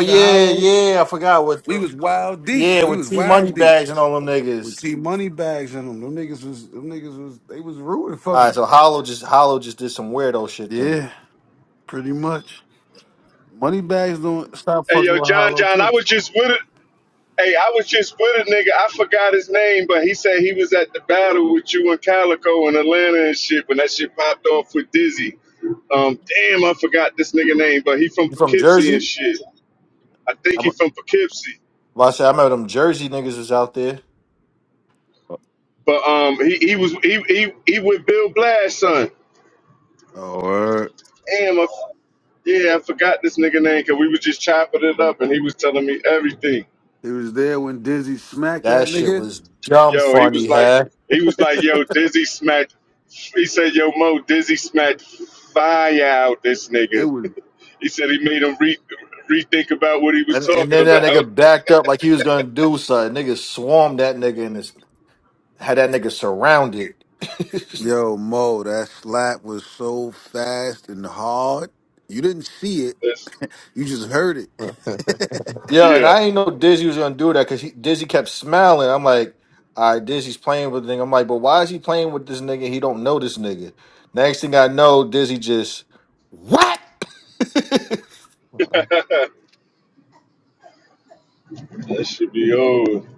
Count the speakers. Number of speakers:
three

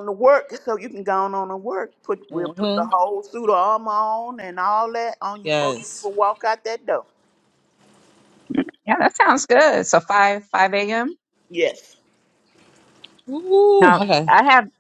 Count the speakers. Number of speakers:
three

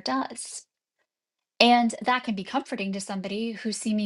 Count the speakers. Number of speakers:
one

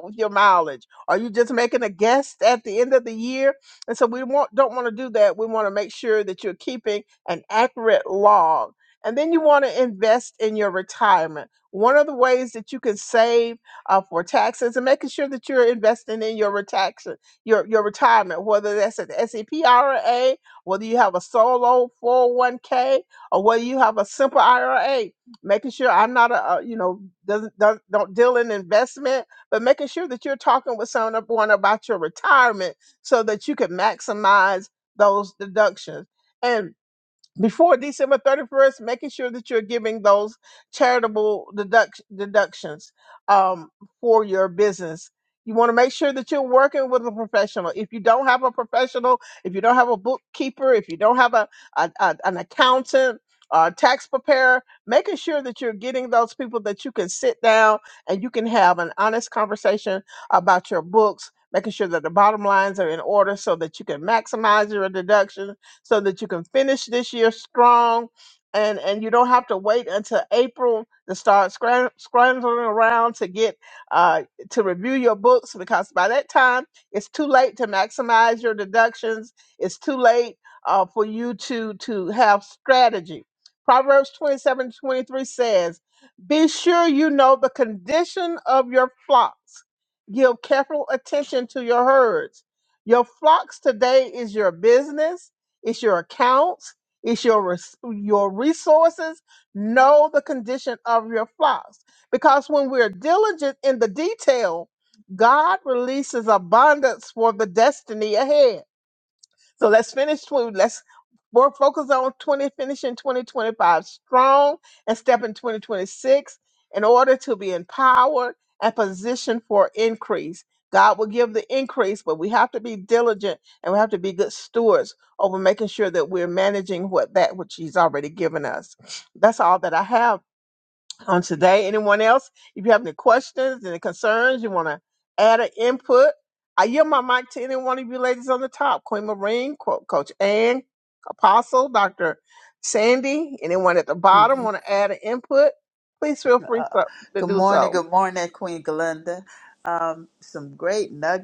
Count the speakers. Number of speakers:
two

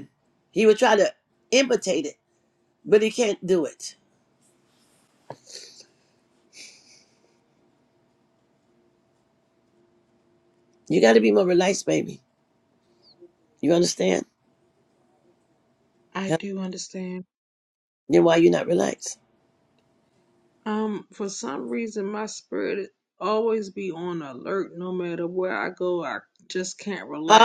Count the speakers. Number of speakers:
two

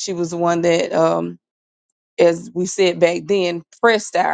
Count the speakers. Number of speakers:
one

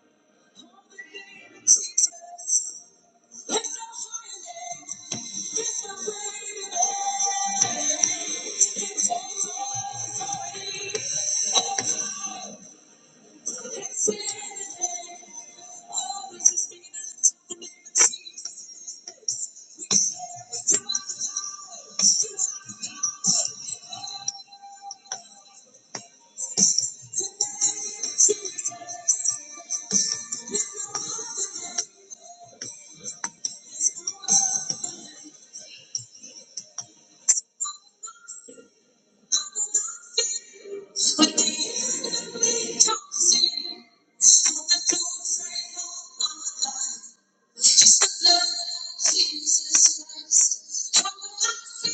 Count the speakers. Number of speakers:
zero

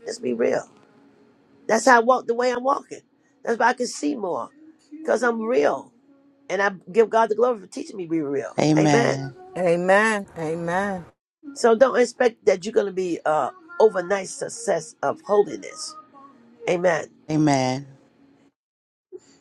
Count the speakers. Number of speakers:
three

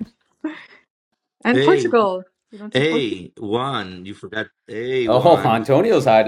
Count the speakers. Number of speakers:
three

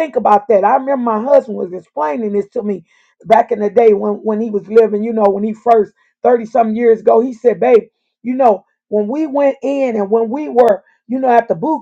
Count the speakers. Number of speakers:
one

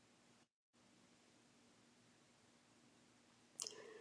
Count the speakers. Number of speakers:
zero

